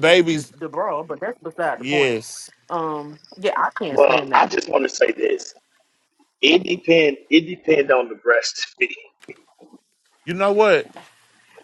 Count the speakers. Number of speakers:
three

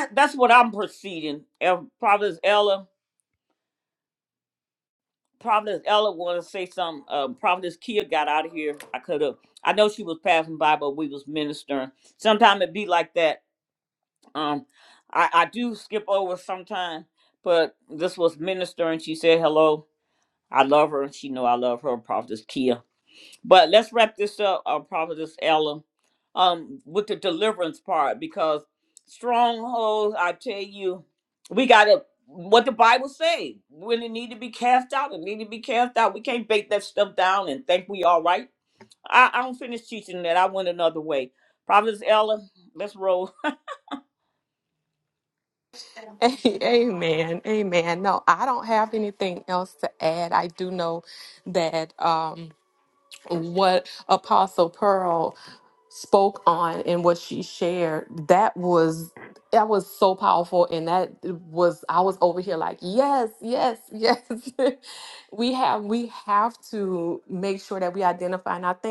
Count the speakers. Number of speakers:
two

